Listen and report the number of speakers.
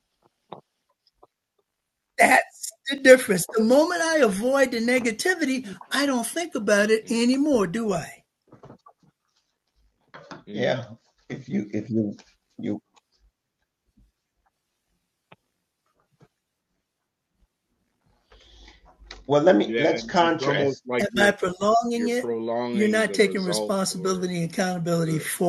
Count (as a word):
three